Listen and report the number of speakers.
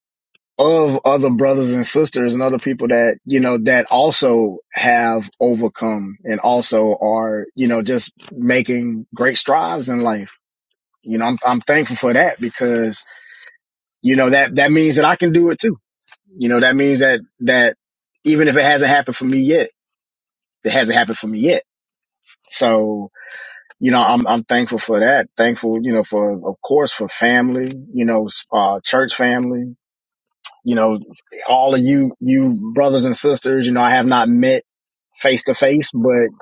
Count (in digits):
1